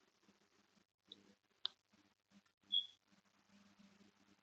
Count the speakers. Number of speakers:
0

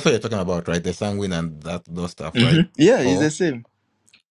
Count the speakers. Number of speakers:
2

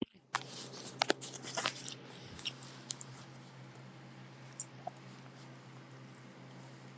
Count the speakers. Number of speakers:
0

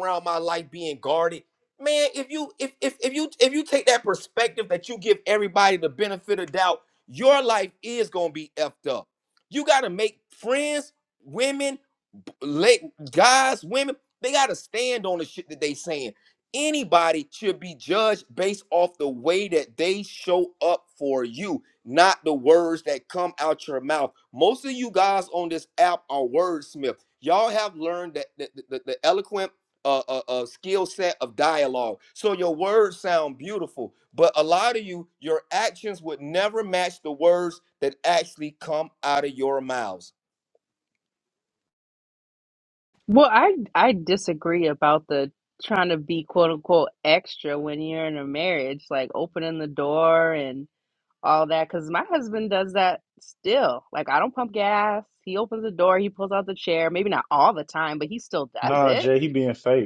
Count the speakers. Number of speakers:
3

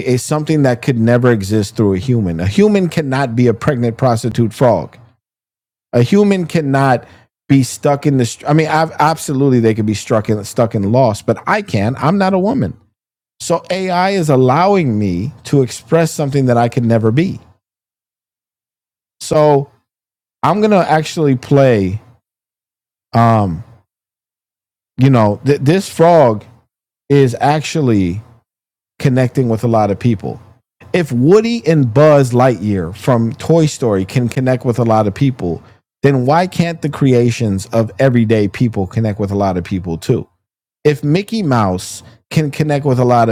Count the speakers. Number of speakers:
1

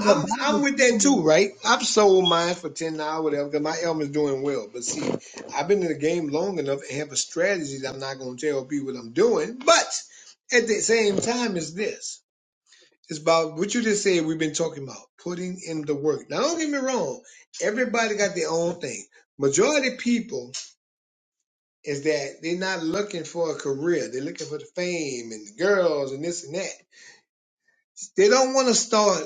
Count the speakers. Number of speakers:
1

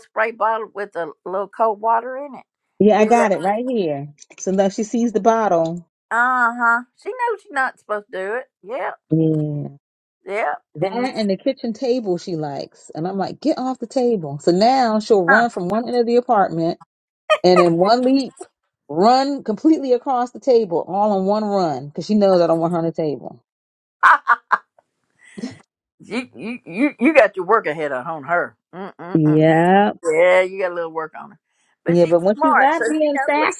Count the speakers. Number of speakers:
2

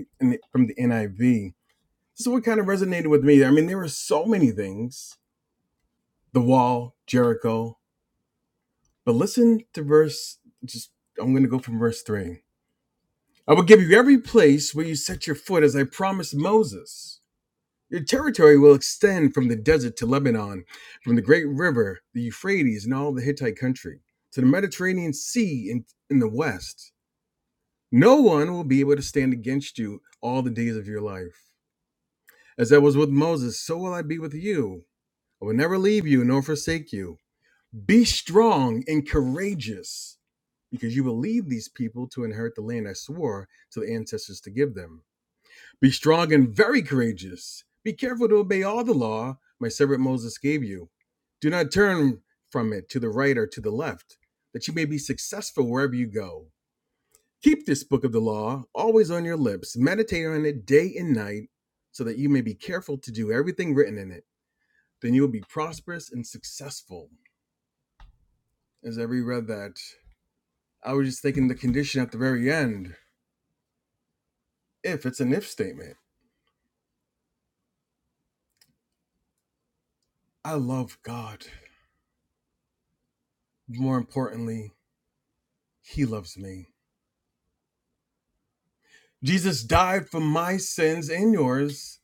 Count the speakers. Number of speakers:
1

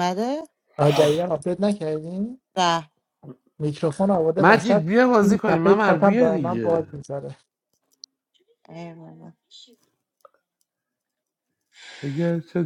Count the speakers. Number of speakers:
3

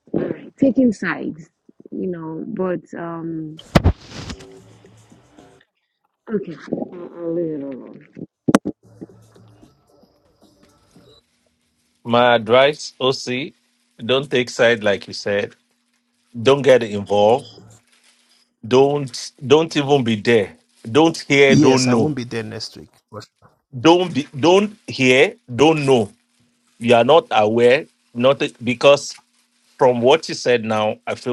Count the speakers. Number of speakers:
3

